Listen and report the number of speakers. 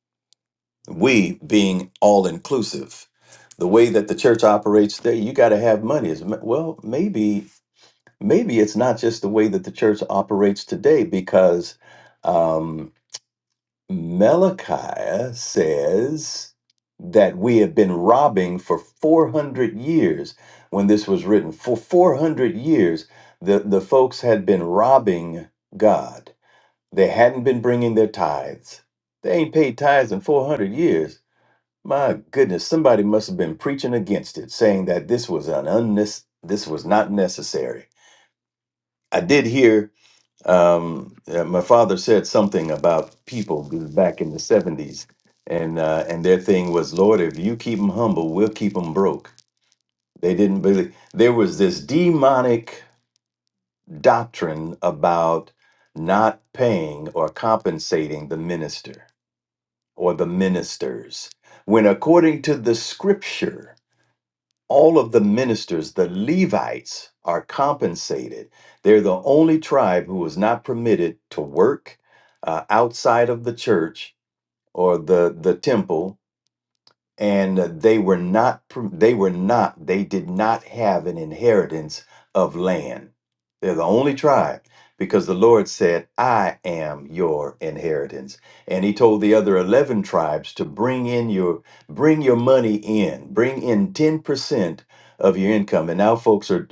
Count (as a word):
one